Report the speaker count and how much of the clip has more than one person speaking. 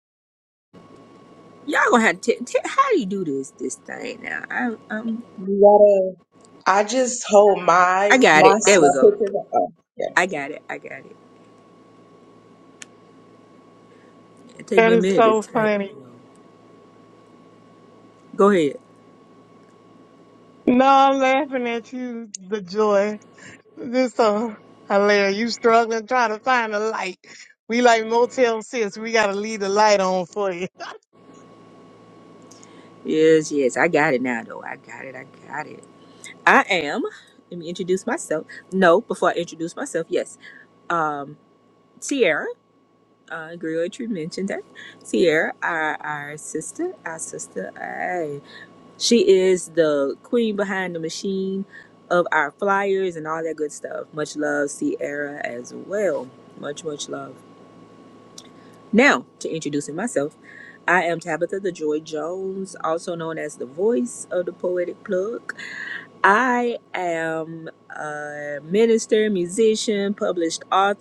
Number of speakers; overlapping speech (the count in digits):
3, about 3%